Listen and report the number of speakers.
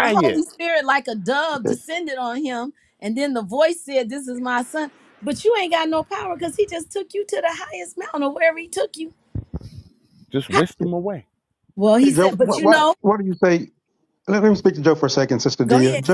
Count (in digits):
3